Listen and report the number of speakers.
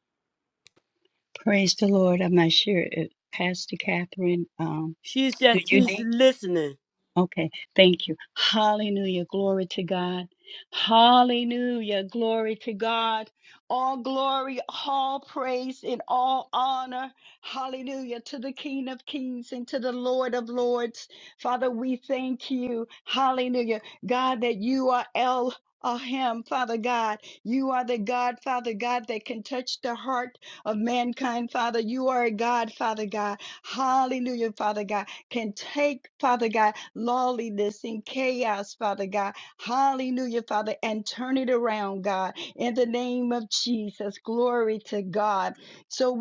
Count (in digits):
2